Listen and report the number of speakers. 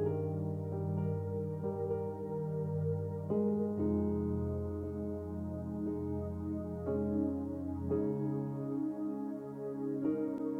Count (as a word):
zero